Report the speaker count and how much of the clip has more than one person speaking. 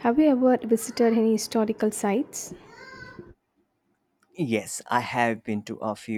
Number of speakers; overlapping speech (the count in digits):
2, no overlap